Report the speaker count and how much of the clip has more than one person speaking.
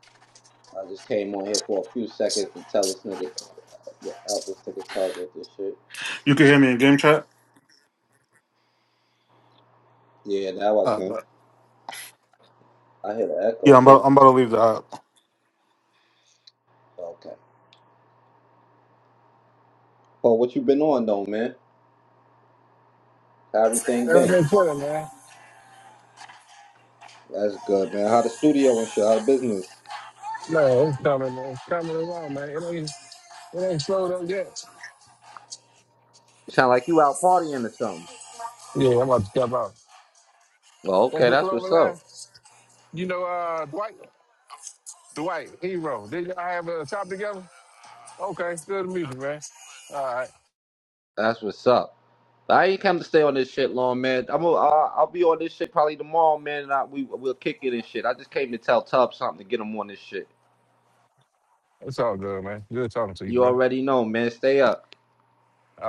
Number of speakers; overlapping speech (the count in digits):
3, about 3%